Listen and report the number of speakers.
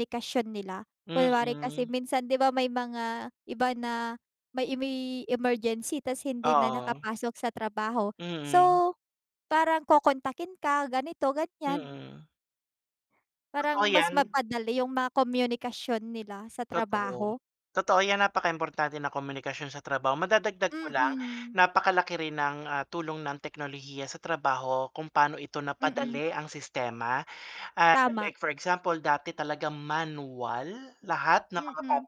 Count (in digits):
2